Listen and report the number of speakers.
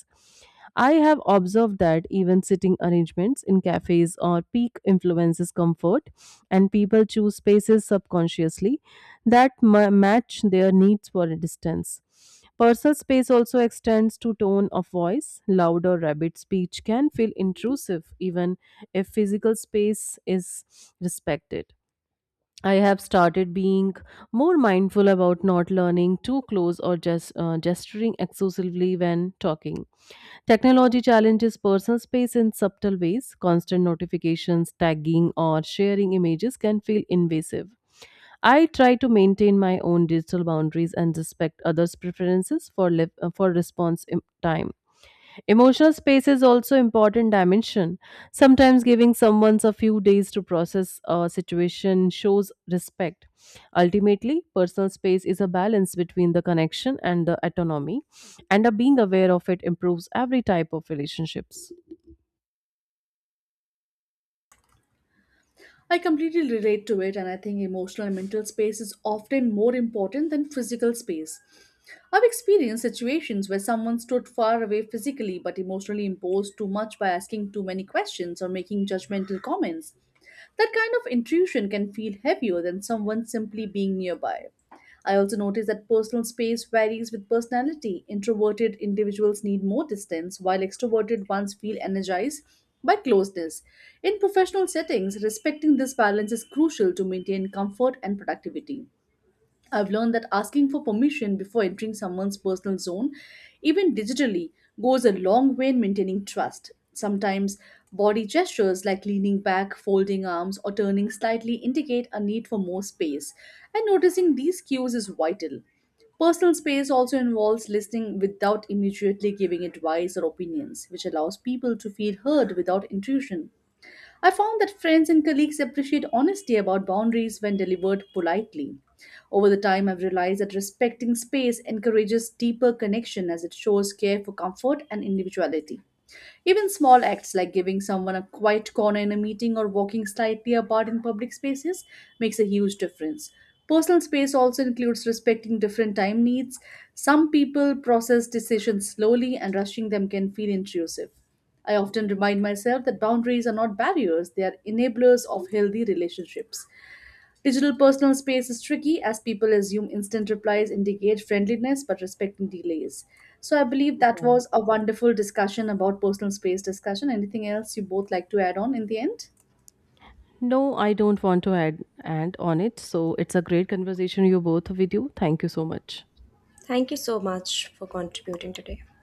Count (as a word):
three